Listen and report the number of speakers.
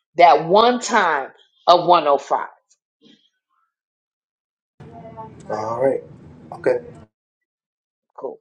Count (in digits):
2